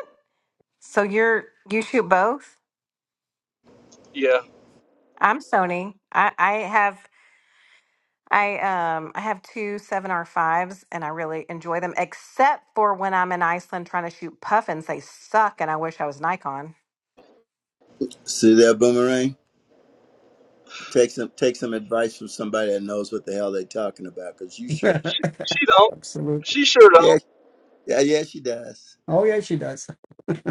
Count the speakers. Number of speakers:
4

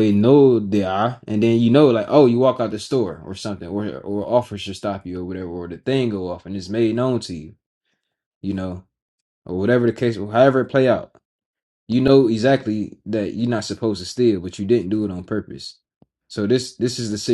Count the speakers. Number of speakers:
1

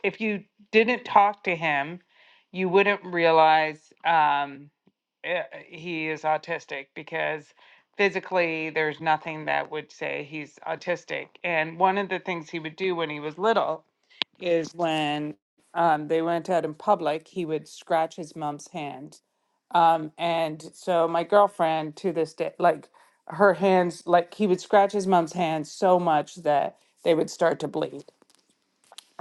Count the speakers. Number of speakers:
1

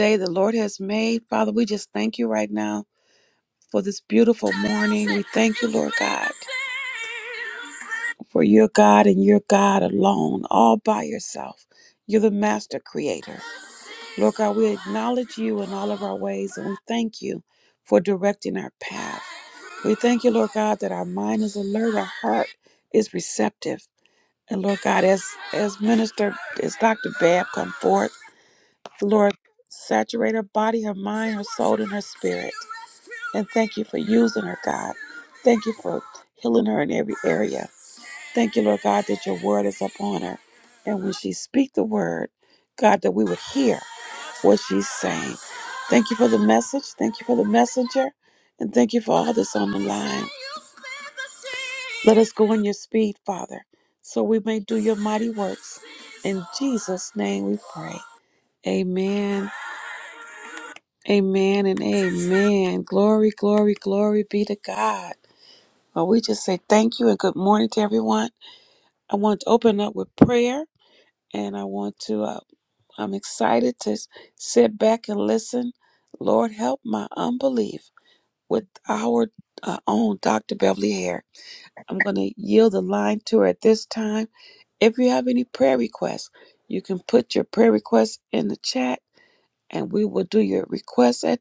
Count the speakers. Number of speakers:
1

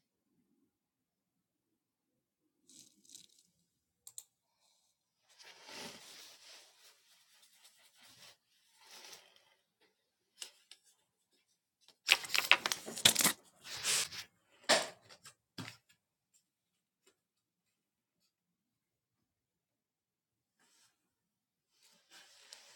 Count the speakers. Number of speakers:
0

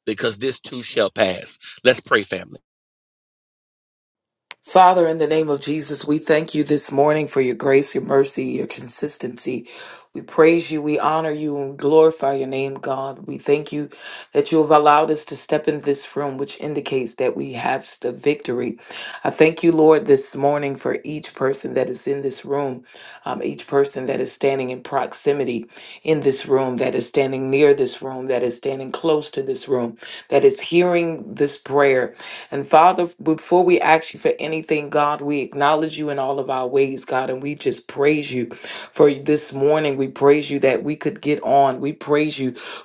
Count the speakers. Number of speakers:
2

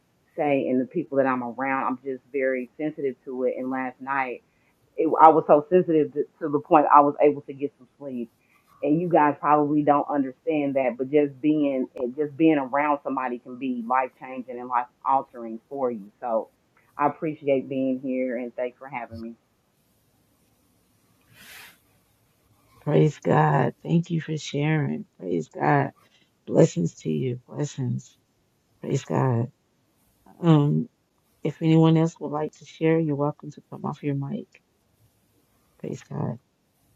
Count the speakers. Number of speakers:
2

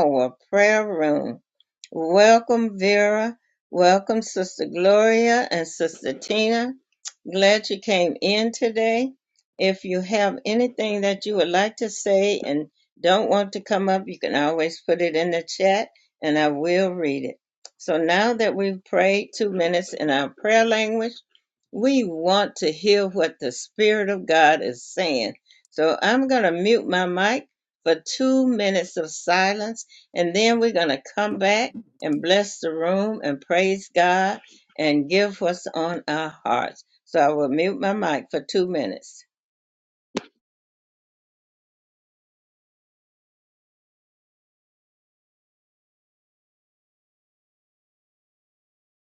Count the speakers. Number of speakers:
1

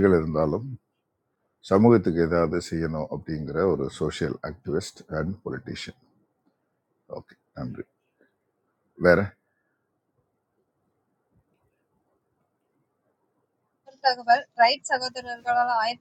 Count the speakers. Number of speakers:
2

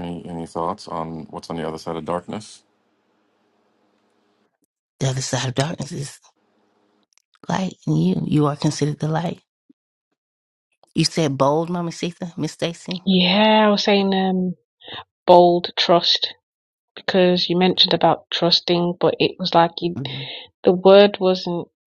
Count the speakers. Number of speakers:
3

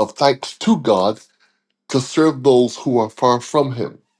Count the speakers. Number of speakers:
1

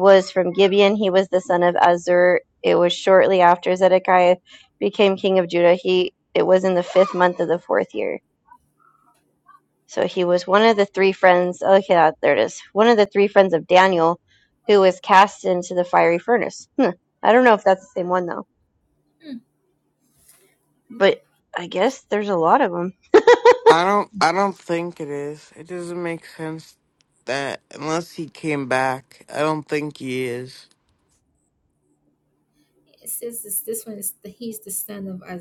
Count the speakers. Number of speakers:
3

